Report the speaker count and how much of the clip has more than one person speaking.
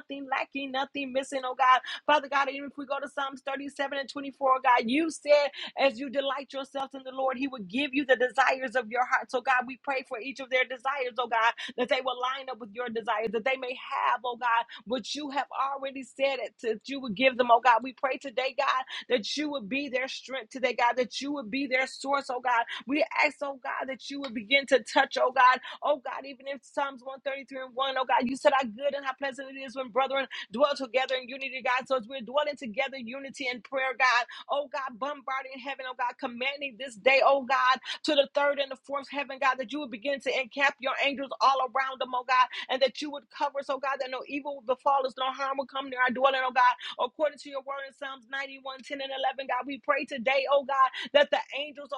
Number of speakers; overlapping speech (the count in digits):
1, no overlap